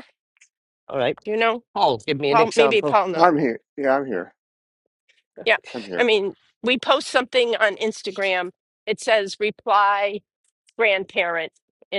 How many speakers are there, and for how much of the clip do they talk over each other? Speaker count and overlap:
three, about 7%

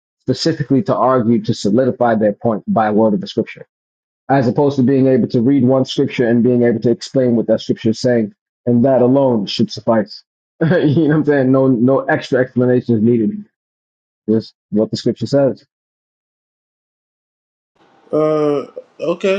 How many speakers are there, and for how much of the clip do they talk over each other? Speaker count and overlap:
two, no overlap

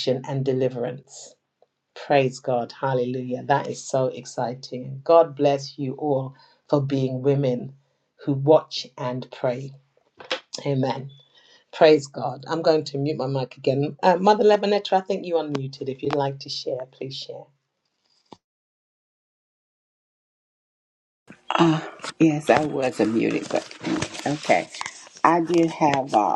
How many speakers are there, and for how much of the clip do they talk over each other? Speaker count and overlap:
two, no overlap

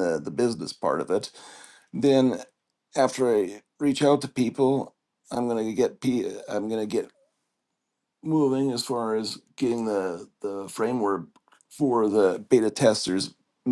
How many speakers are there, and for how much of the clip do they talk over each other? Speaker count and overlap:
one, no overlap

